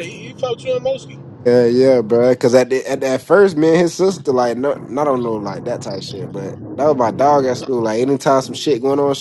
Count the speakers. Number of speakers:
2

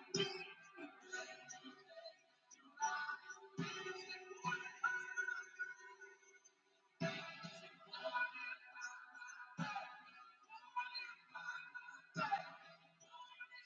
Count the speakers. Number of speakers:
0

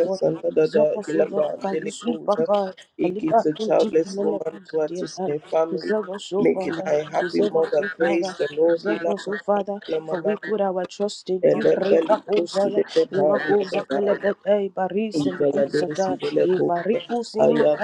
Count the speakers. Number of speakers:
2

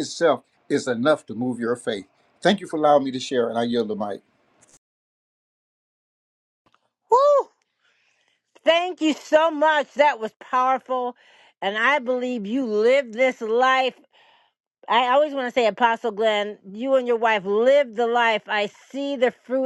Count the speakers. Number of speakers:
2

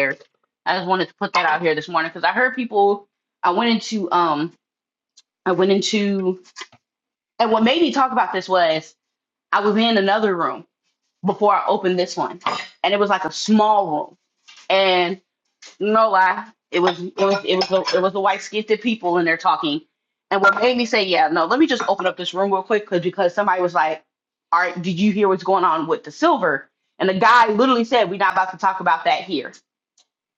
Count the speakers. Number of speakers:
1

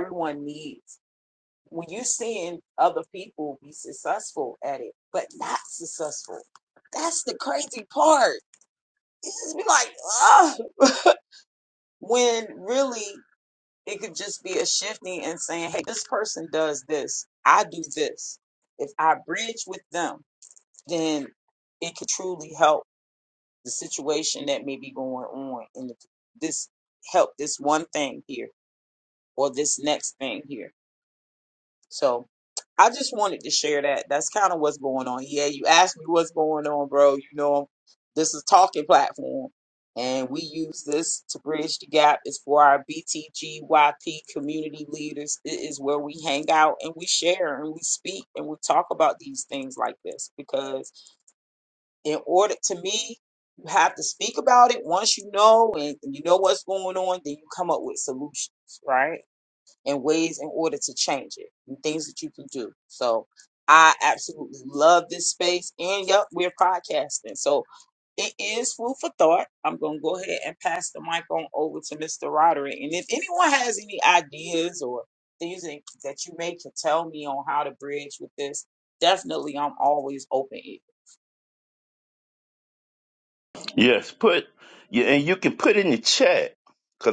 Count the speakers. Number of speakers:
2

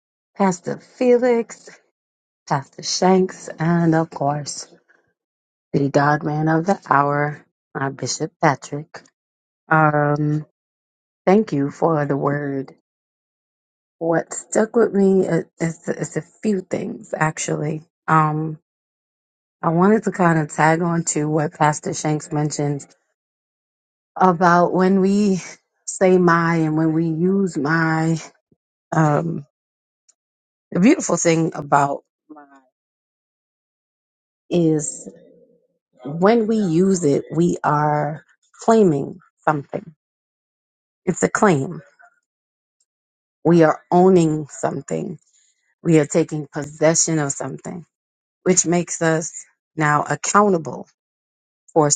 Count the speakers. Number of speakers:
1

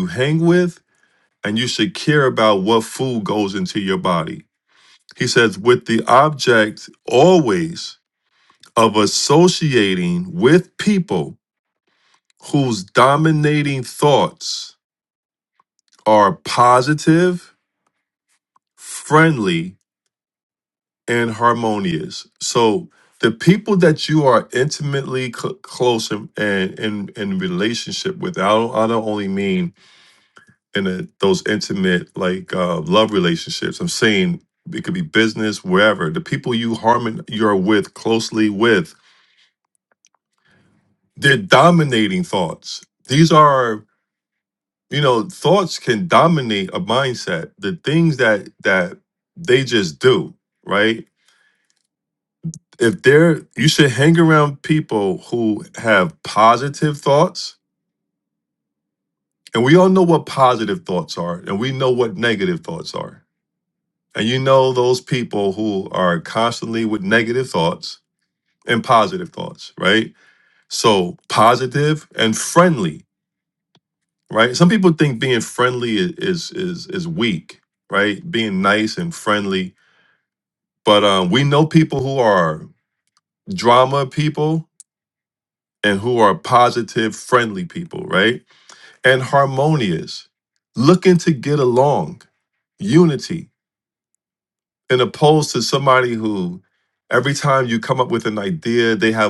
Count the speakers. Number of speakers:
1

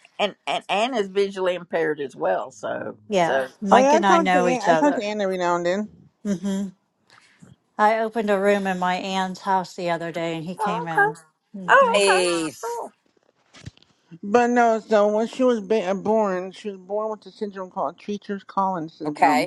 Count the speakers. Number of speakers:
4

